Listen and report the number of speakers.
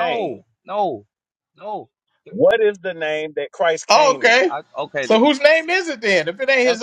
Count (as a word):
three